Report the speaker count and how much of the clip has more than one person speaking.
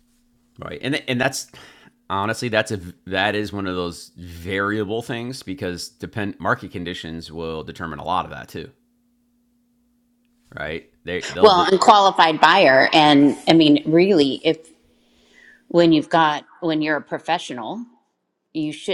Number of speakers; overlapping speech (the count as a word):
two, about 1%